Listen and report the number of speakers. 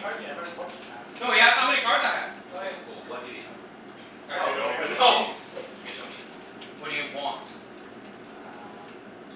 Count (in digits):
3